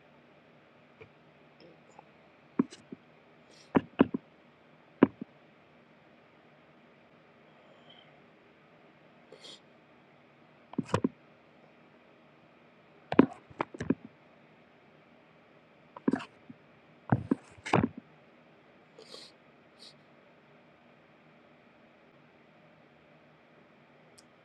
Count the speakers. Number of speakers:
zero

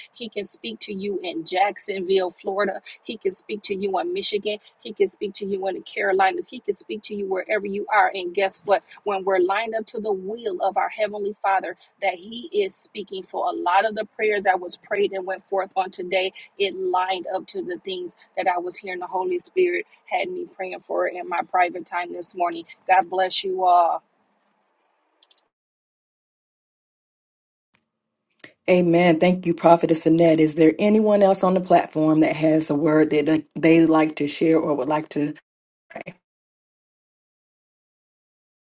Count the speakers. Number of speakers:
two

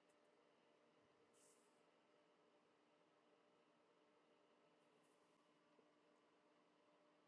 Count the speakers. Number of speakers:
zero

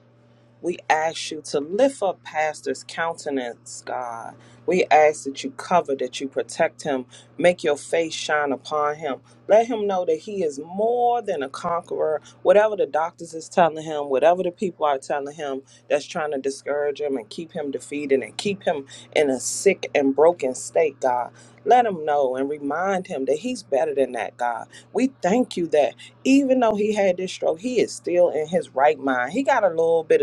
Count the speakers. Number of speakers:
one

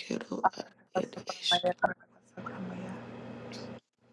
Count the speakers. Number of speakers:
two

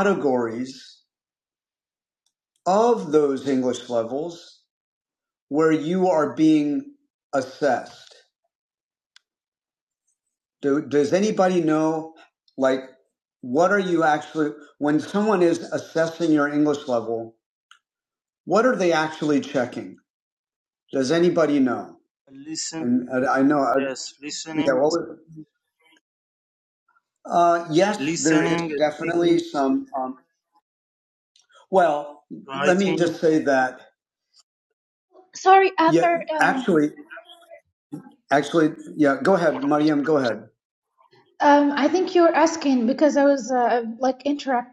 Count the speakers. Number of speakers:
three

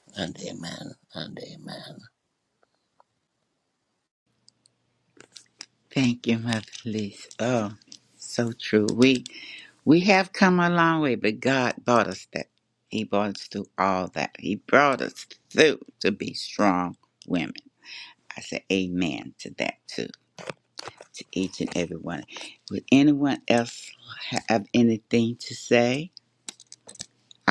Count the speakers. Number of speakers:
two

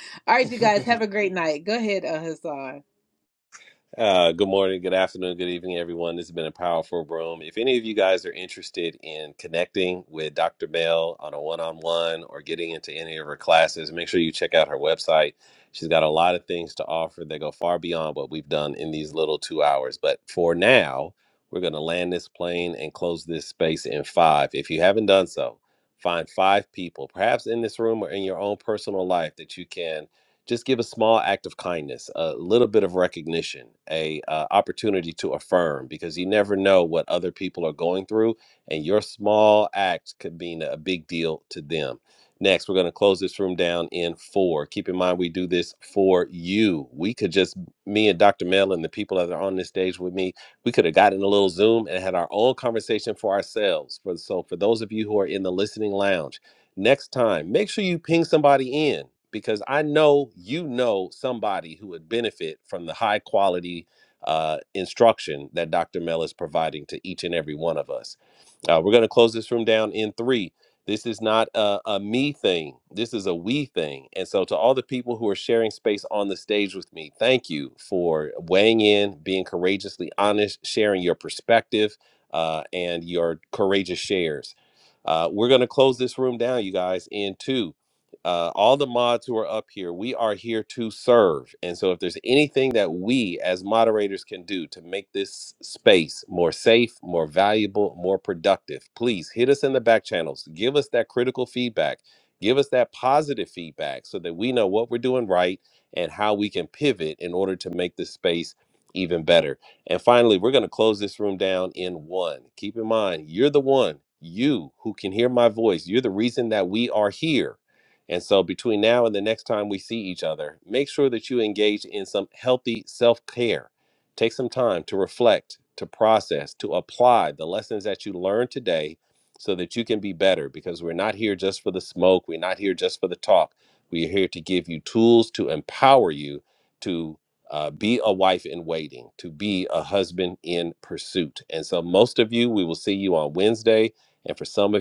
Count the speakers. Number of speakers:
two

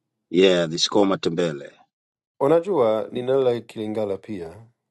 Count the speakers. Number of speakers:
two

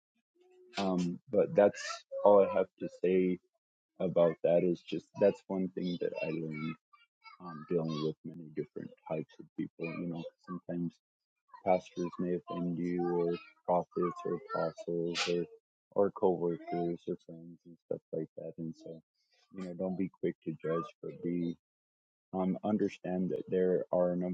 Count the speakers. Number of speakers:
one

